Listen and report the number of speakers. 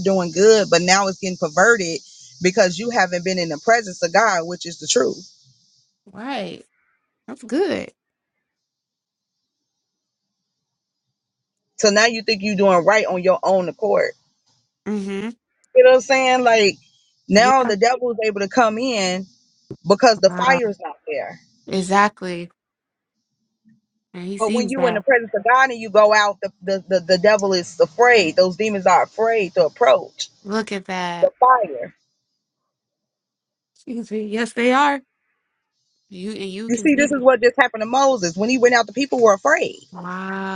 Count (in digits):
2